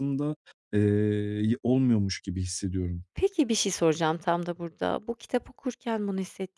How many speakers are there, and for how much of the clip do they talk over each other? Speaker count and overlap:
two, no overlap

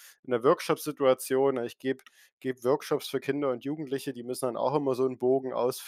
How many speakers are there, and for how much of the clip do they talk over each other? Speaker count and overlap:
one, no overlap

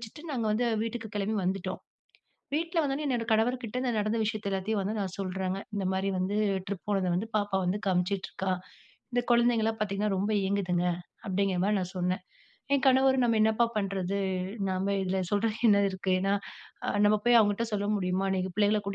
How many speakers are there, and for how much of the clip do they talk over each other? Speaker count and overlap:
one, no overlap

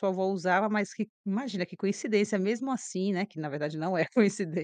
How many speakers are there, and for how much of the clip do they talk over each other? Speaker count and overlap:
one, no overlap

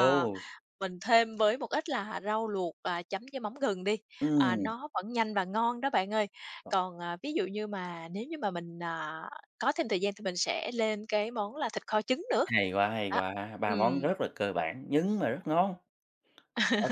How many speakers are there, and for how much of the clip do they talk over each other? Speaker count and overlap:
two, about 6%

